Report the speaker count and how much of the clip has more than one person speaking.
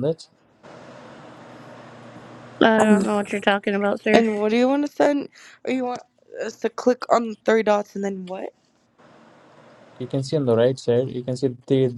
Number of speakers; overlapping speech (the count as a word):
three, about 4%